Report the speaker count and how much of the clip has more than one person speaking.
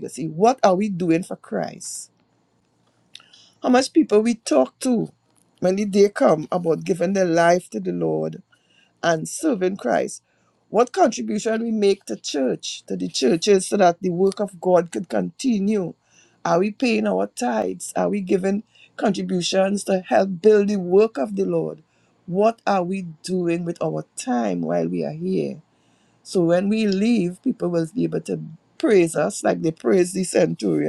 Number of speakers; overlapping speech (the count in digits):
1, no overlap